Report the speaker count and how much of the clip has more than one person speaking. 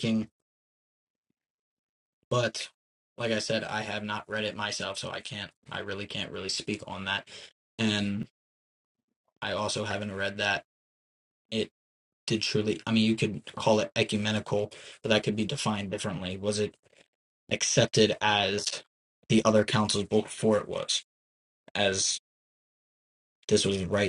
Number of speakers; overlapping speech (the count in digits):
1, no overlap